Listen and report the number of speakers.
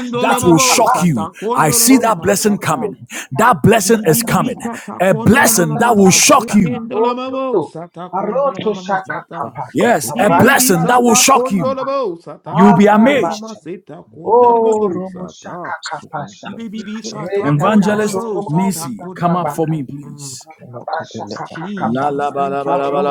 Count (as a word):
three